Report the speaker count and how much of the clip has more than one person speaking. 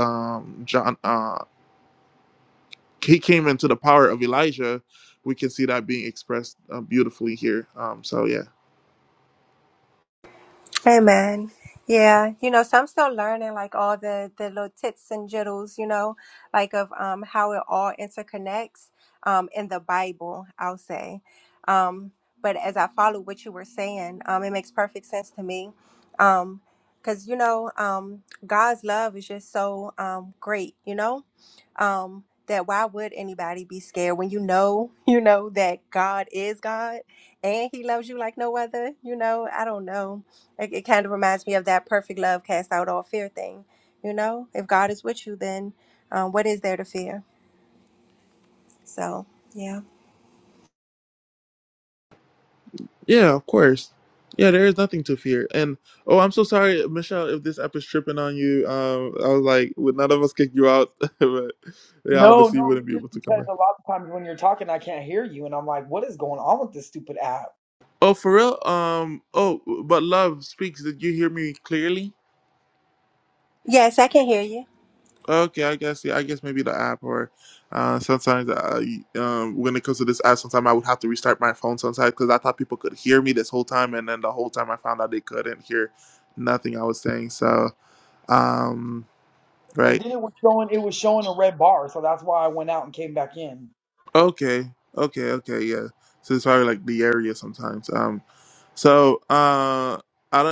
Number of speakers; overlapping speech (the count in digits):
3, about 2%